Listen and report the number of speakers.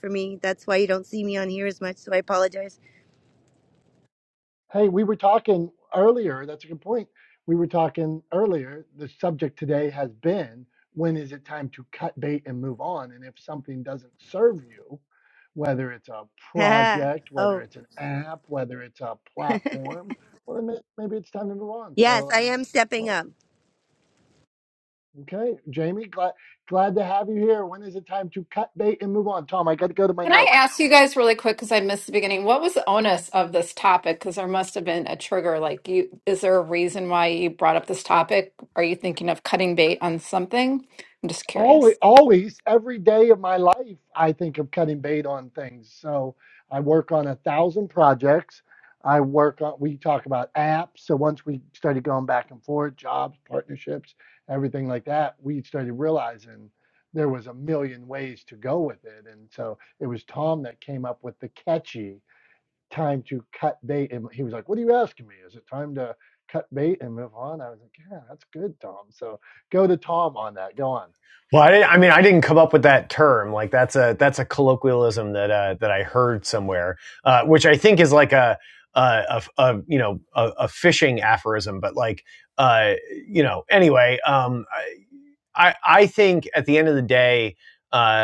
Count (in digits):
4